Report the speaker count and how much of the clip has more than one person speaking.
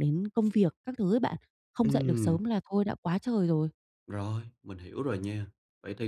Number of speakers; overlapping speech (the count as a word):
two, about 9%